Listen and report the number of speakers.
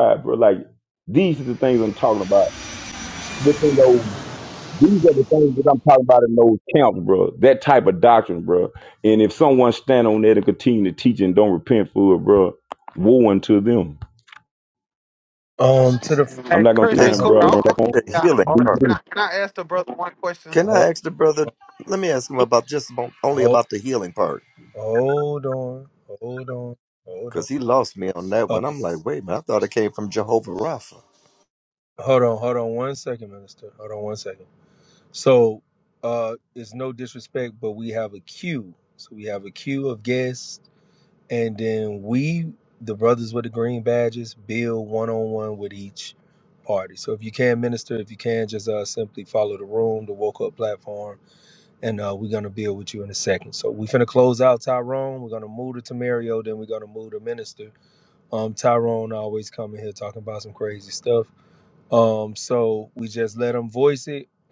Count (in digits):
4